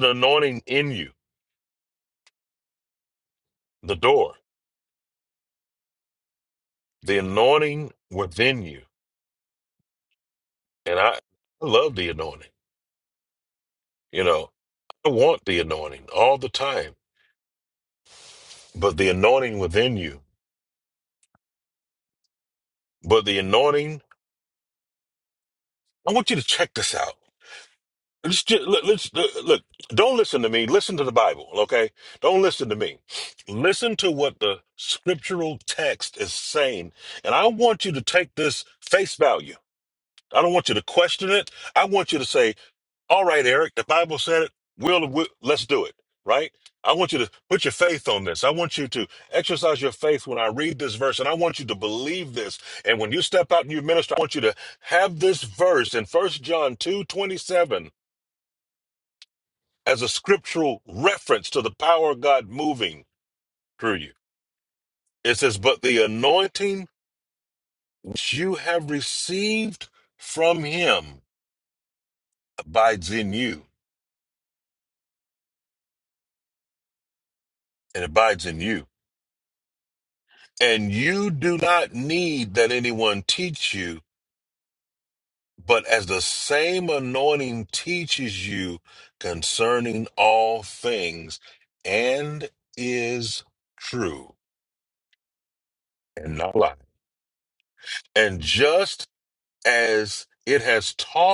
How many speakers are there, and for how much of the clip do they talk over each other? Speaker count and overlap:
1, no overlap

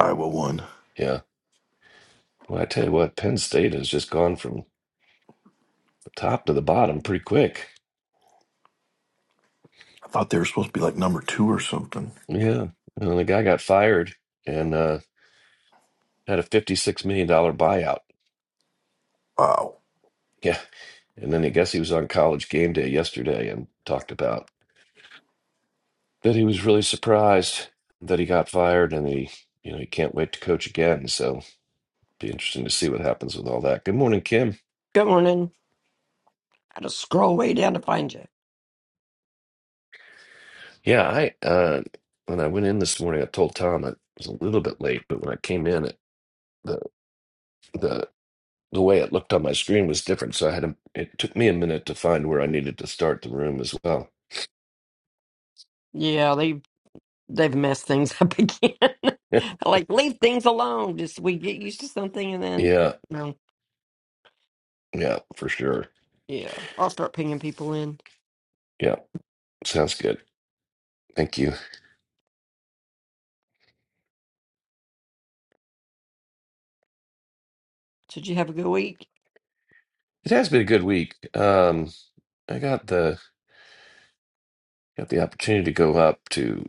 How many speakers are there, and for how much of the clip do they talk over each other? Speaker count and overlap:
3, under 1%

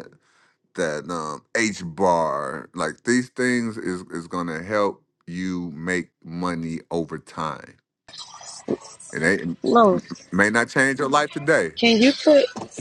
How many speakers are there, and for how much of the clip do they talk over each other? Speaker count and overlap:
2, about 1%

